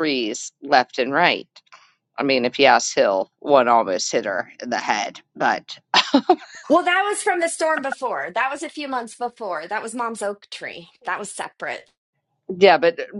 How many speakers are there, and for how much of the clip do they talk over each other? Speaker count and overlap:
2, no overlap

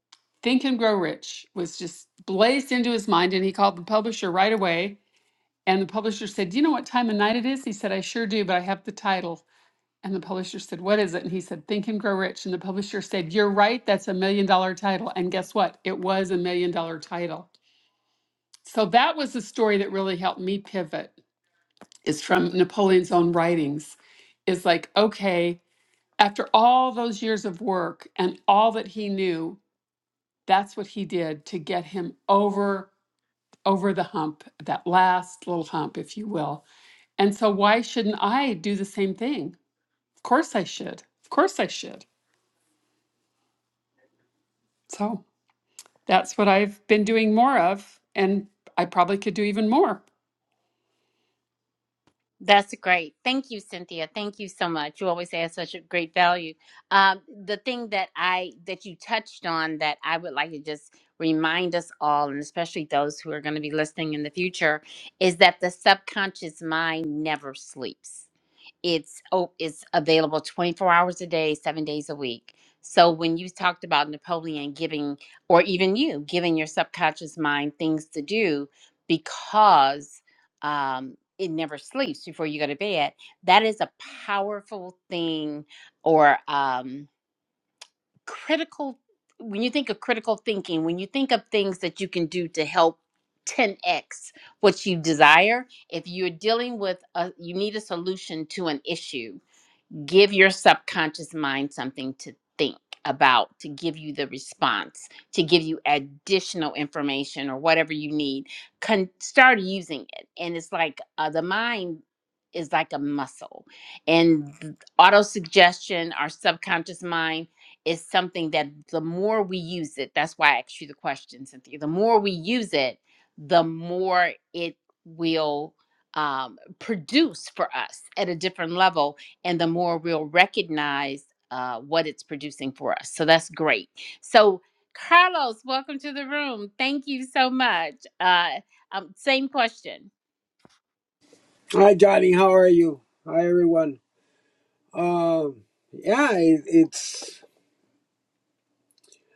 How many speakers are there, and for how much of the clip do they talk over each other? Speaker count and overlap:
3, no overlap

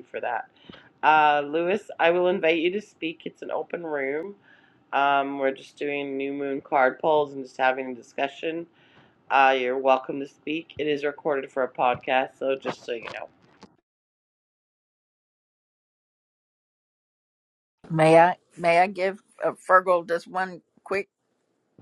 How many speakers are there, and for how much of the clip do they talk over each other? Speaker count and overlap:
2, no overlap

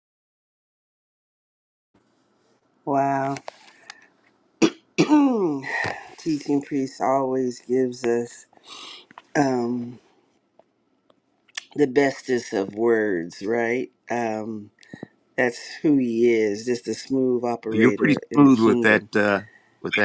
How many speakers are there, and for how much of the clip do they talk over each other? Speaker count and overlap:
2, about 7%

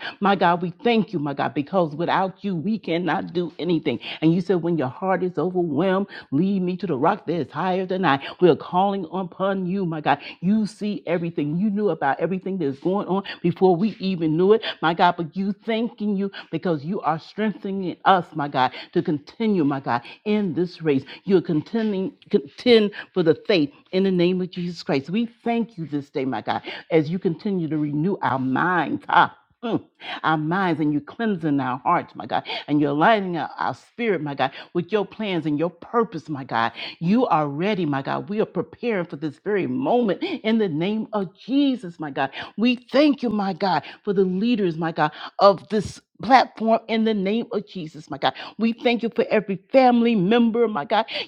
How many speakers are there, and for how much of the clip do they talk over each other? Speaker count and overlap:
1, no overlap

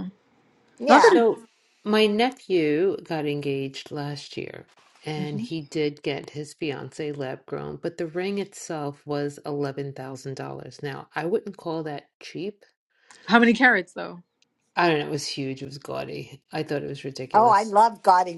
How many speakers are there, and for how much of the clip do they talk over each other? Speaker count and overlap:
3, about 5%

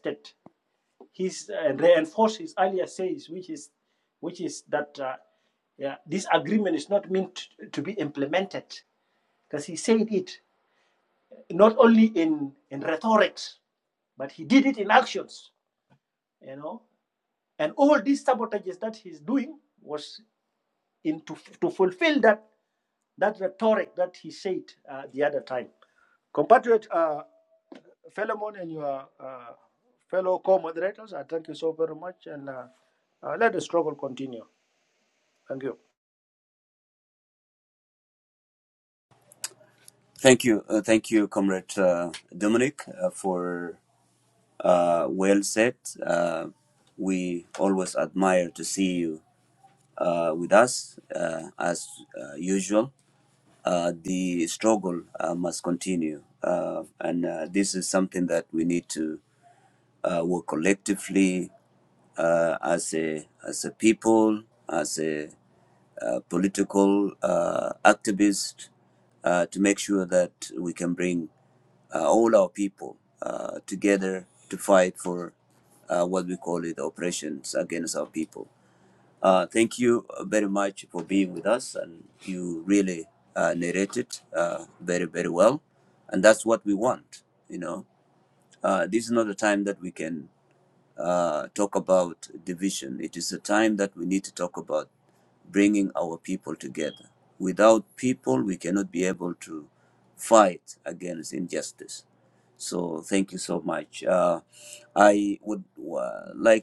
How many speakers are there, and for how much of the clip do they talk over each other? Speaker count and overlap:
2, no overlap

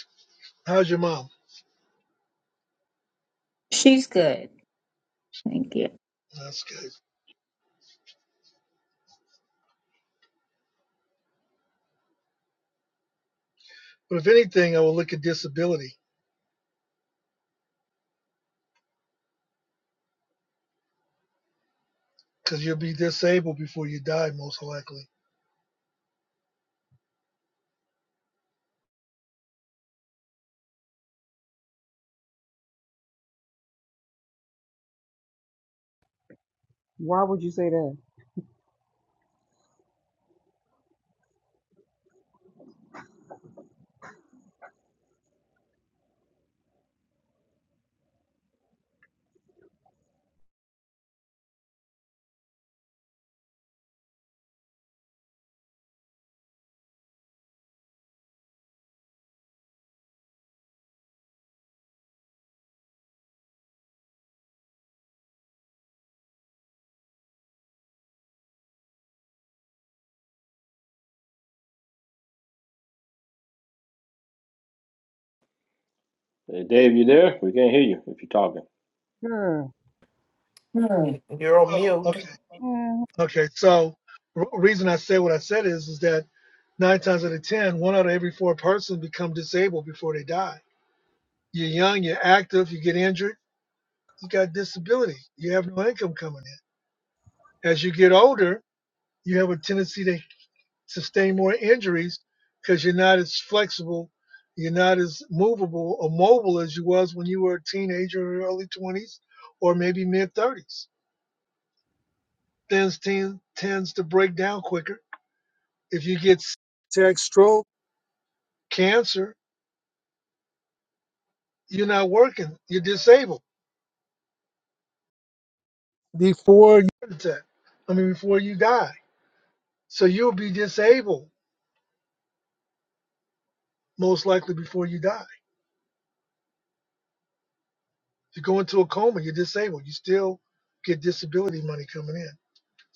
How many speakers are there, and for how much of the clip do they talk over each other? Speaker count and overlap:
5, under 1%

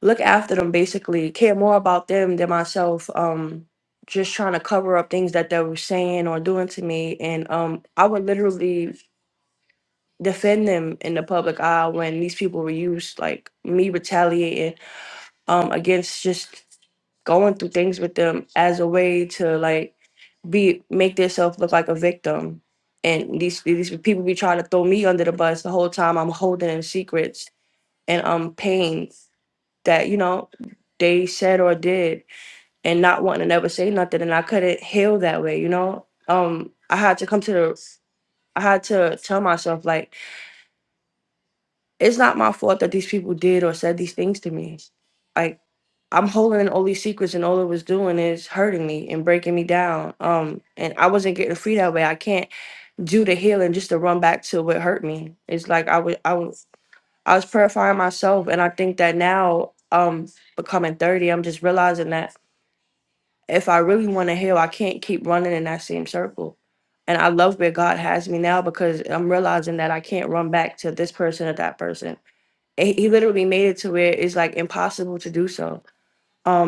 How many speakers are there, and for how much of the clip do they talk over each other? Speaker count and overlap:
1, no overlap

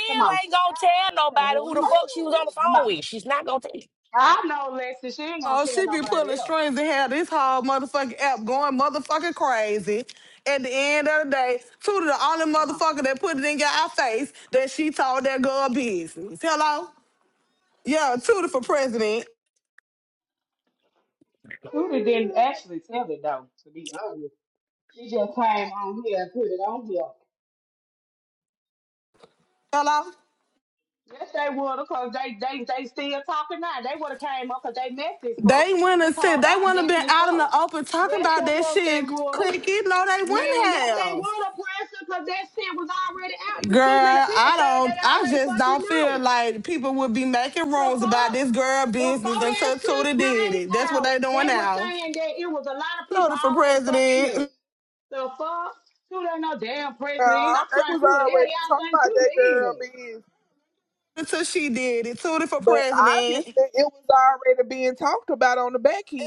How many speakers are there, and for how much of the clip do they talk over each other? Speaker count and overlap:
4, about 26%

